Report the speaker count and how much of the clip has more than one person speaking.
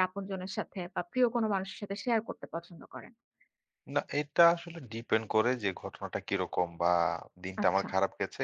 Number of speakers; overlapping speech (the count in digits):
2, about 4%